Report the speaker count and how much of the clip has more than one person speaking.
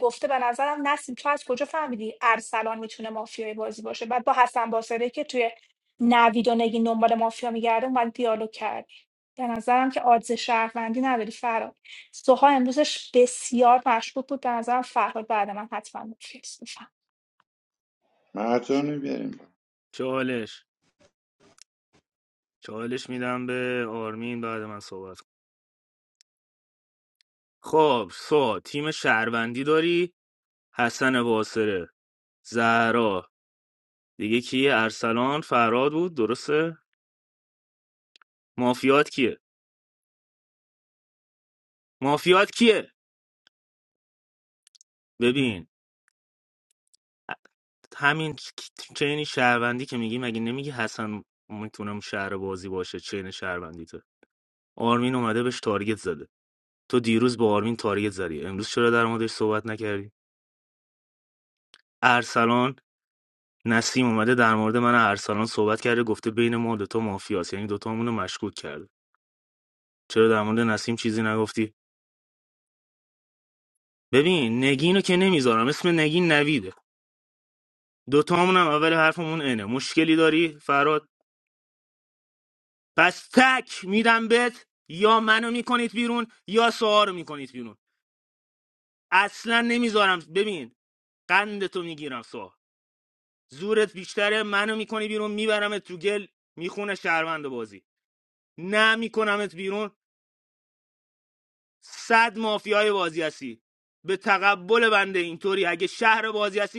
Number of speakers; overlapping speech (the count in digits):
3, no overlap